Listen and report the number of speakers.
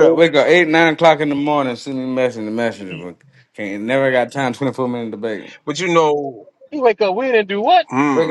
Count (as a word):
three